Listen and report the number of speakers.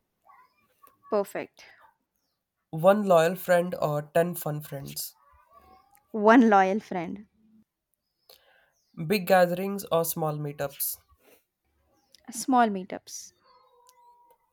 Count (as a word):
two